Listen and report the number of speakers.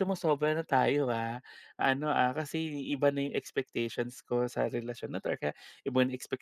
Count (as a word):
one